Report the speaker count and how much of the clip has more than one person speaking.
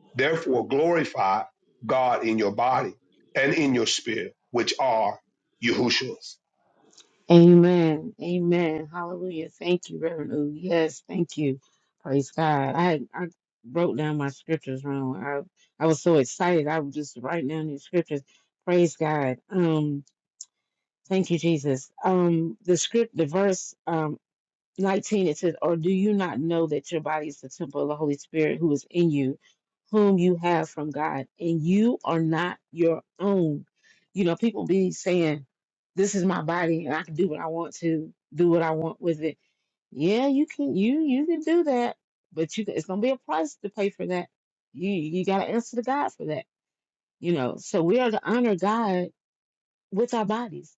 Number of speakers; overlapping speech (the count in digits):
2, no overlap